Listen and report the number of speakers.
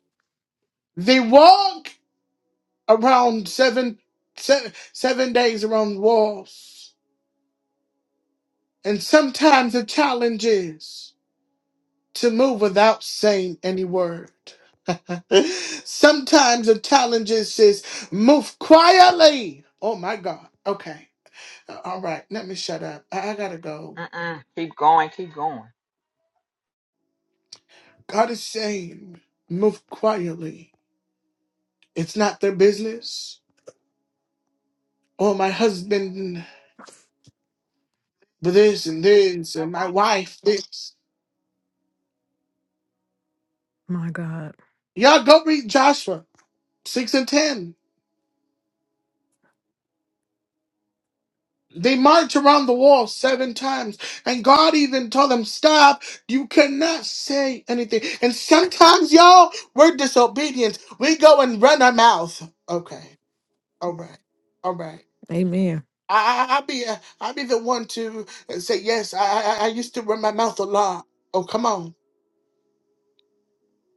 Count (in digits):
3